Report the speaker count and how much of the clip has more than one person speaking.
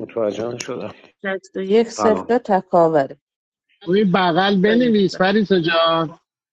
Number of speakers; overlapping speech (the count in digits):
3, about 14%